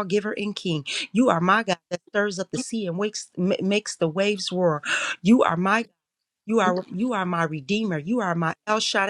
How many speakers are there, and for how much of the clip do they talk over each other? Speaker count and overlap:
1, no overlap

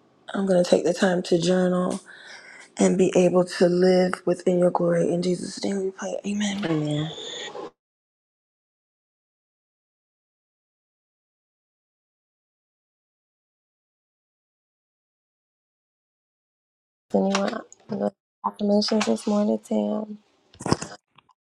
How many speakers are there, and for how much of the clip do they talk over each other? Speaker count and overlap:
2, under 1%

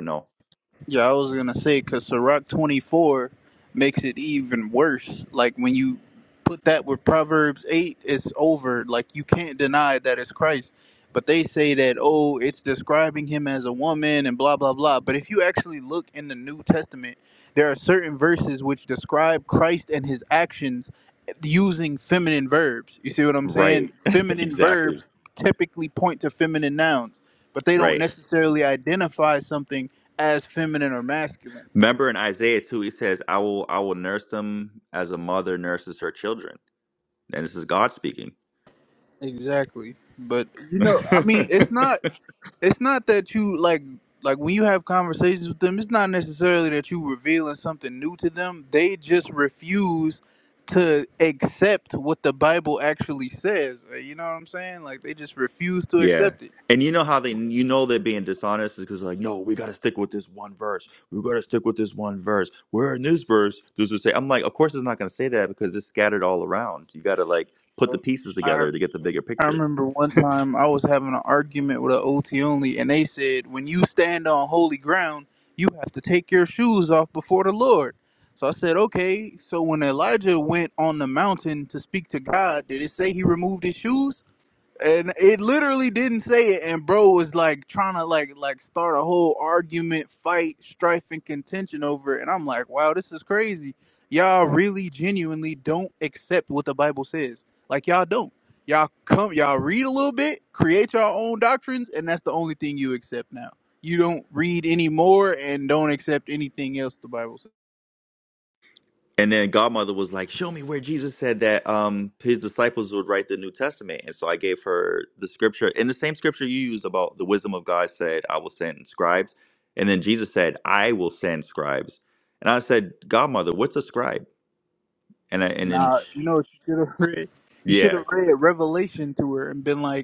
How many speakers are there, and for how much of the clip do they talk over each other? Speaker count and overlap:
2, about 2%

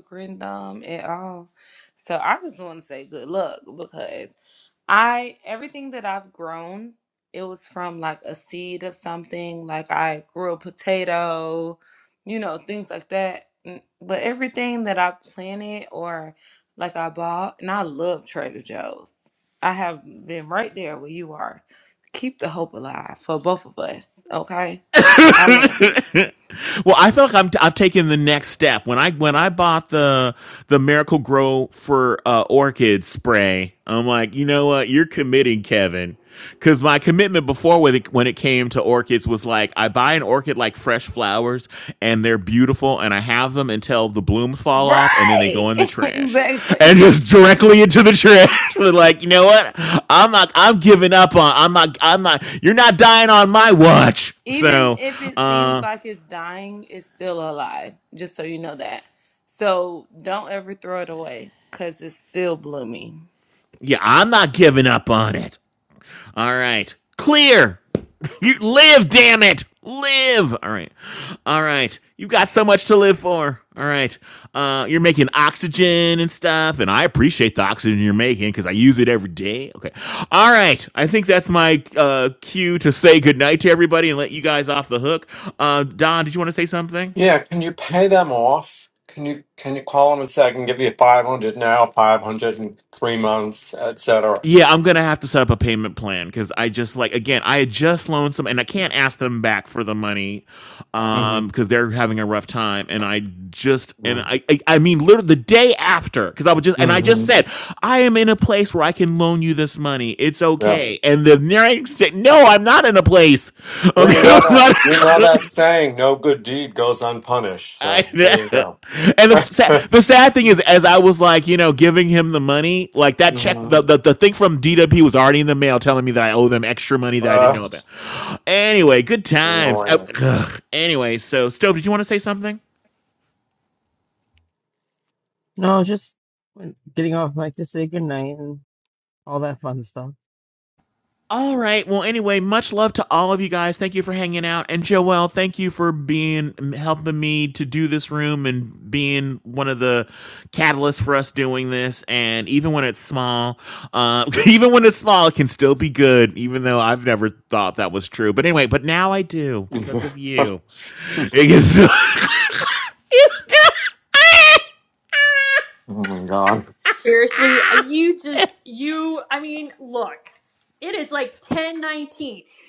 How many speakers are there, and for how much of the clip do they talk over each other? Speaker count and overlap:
5, about 4%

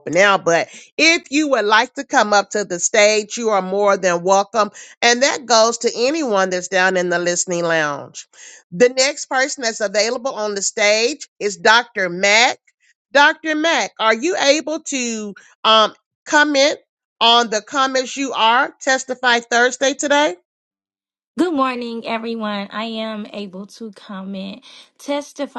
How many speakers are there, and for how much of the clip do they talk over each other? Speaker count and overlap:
2, no overlap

